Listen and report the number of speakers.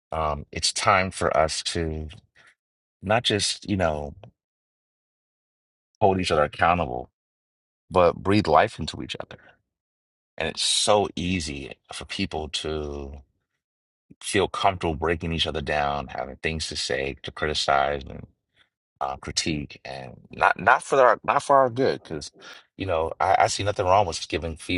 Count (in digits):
1